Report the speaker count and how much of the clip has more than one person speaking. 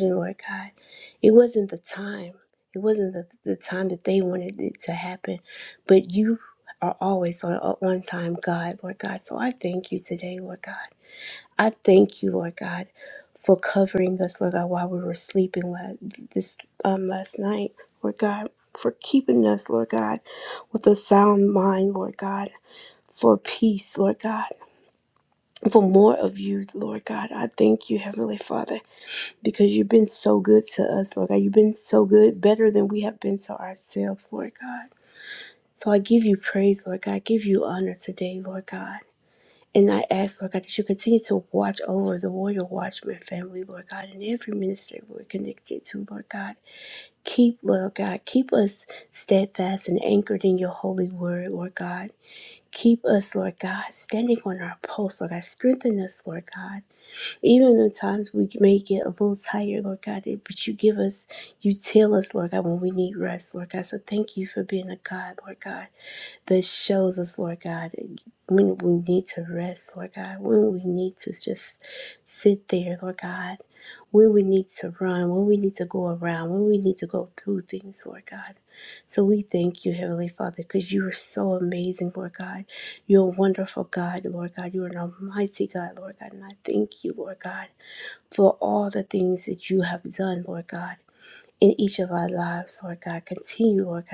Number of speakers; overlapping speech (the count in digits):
1, no overlap